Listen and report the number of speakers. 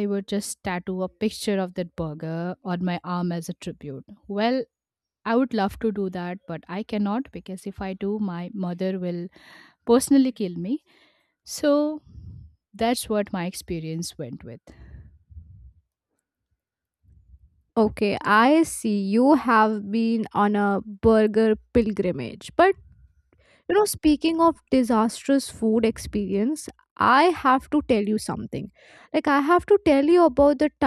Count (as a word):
two